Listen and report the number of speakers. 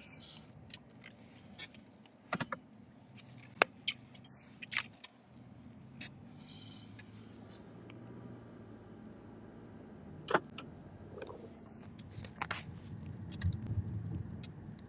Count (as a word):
zero